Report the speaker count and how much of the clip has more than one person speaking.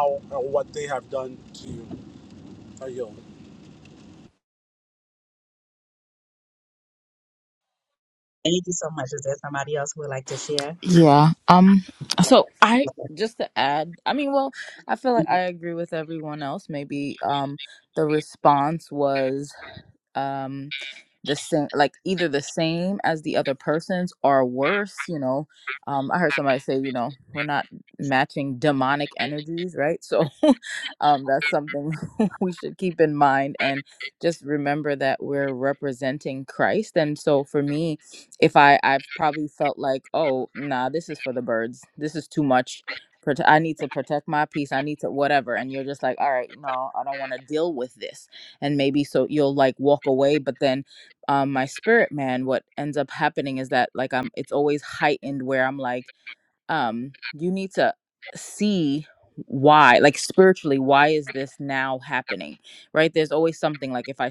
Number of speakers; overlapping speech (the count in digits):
3, no overlap